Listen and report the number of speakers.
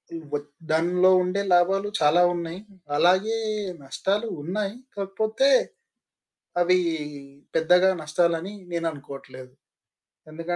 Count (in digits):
1